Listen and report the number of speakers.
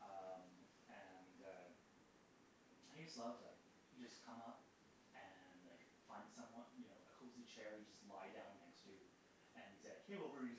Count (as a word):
one